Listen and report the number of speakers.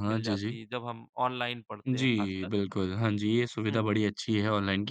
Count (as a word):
two